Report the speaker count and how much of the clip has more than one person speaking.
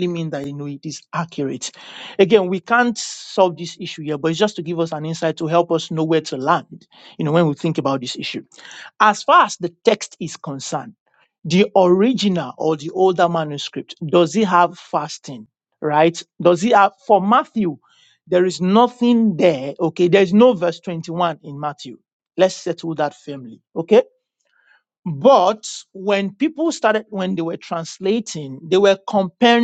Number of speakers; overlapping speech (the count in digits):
1, no overlap